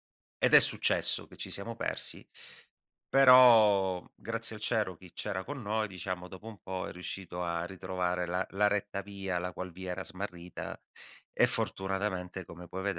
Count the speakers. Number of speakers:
1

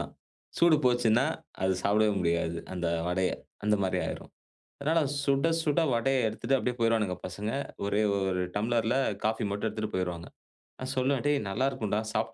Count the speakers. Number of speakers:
1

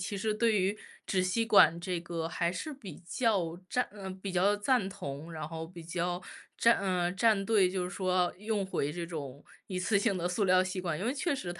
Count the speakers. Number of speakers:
1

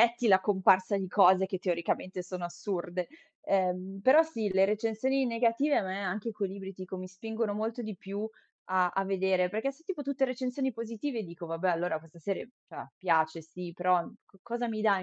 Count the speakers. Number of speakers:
1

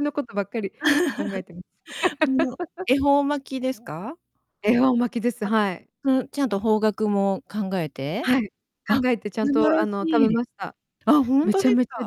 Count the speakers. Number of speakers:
2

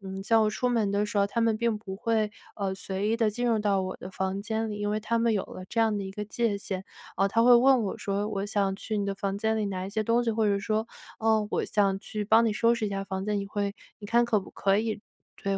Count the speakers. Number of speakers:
1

